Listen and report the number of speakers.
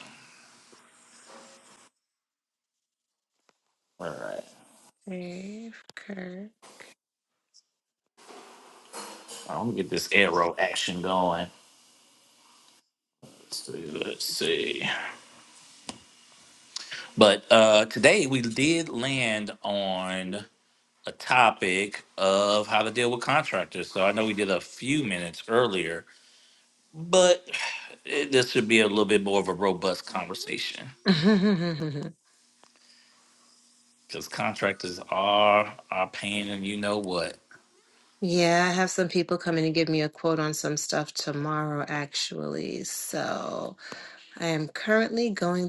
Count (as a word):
two